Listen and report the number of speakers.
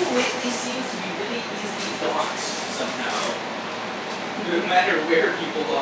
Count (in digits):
1